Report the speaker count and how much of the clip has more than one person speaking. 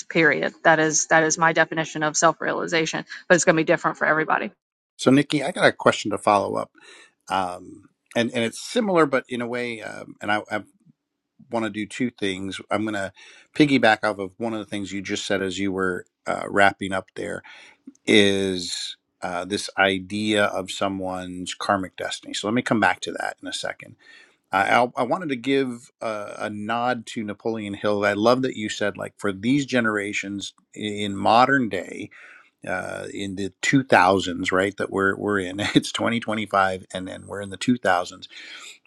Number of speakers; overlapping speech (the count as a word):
two, no overlap